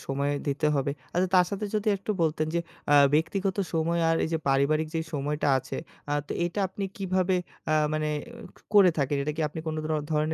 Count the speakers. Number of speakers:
one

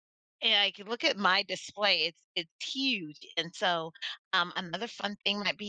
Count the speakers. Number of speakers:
one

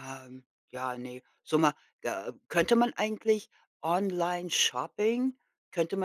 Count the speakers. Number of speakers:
one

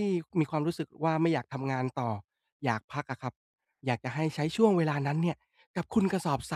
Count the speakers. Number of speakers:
one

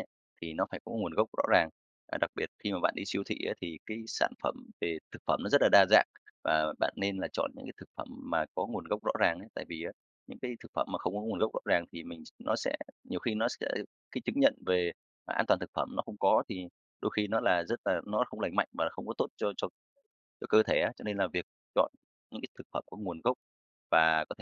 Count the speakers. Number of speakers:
one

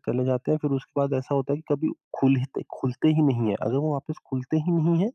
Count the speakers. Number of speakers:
one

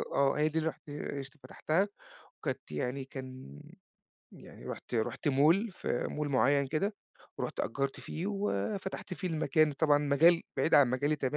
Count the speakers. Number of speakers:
one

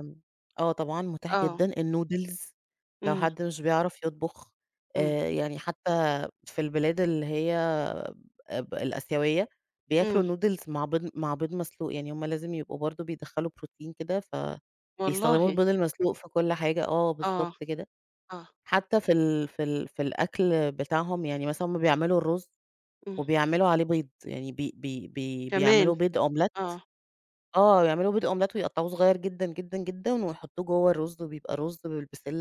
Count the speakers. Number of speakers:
two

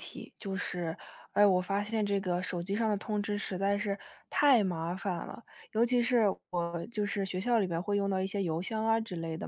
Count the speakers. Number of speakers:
one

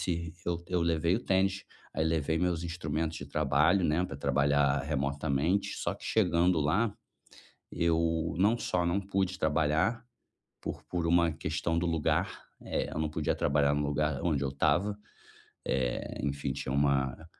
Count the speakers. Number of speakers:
one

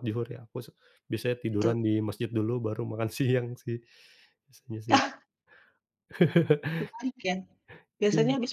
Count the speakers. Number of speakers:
two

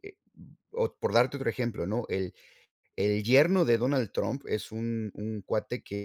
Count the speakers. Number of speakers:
one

